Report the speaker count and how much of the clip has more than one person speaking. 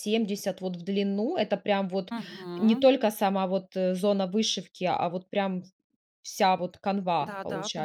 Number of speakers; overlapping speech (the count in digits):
2, about 12%